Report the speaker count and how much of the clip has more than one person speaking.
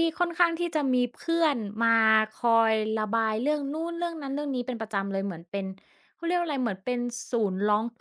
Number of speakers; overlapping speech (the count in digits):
1, no overlap